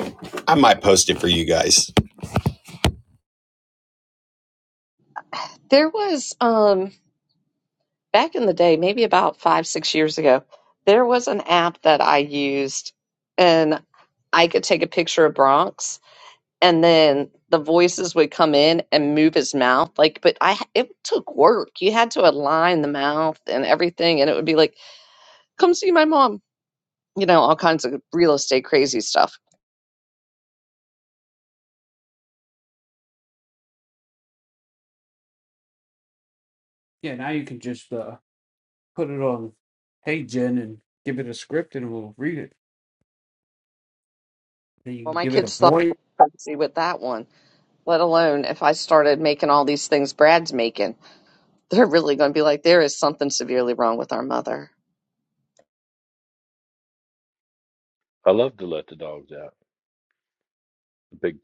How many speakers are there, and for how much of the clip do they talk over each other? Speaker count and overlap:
four, about 1%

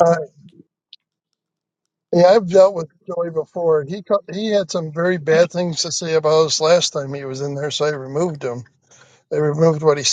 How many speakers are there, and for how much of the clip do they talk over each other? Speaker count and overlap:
one, no overlap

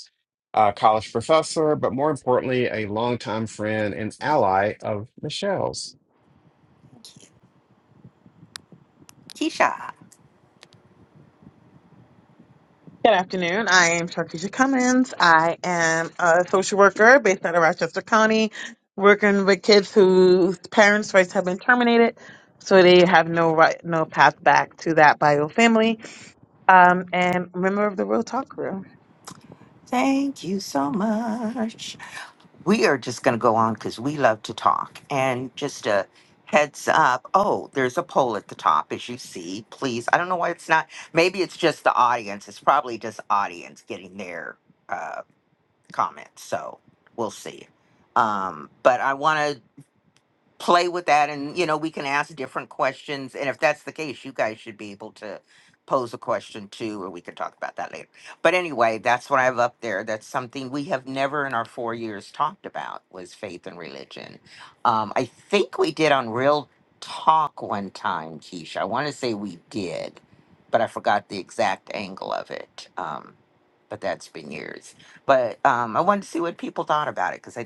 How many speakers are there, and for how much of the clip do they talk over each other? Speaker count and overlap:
three, no overlap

